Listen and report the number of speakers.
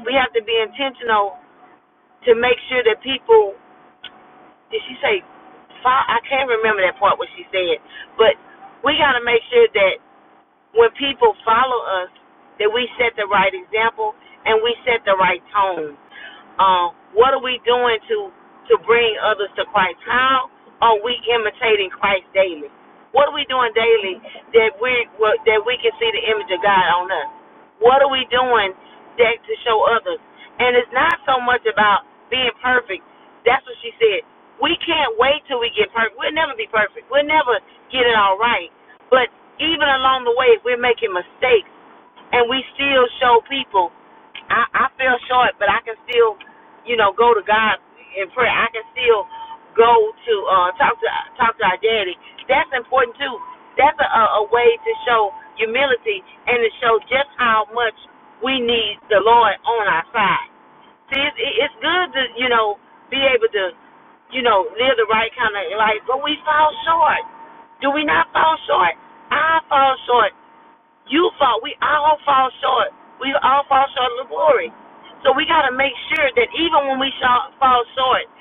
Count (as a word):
one